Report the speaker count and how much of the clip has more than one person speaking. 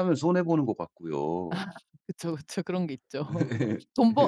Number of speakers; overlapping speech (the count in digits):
2, about 7%